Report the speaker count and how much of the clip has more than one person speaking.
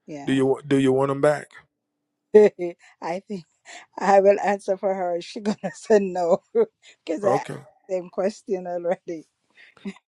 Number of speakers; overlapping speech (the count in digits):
2, about 3%